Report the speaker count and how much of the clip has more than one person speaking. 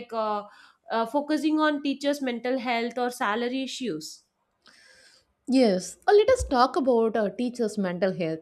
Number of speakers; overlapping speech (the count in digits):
2, no overlap